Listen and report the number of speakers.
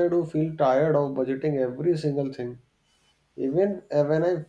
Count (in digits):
1